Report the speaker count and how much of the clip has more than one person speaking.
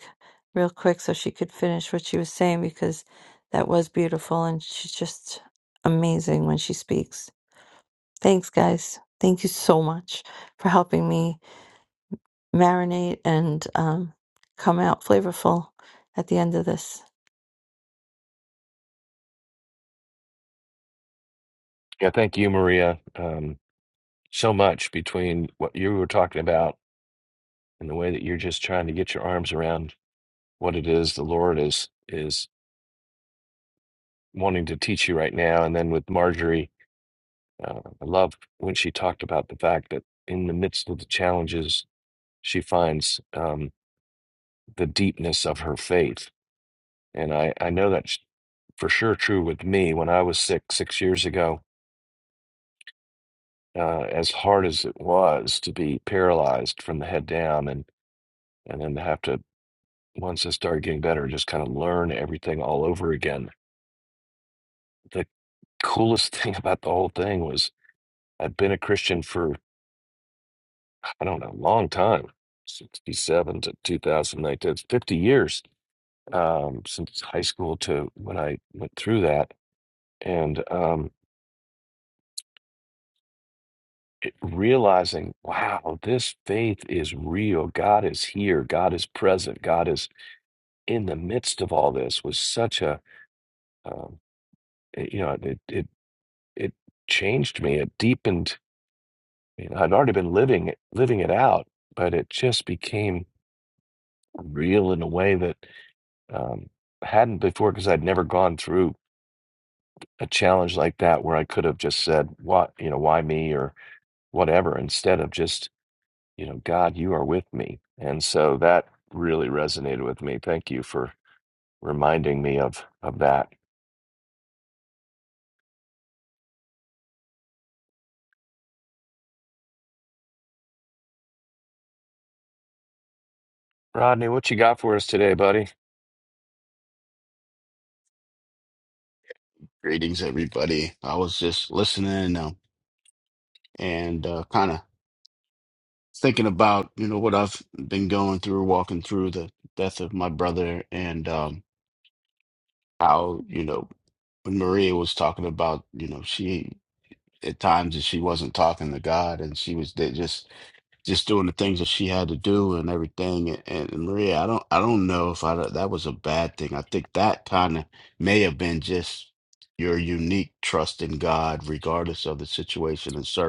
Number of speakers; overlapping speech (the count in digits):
3, no overlap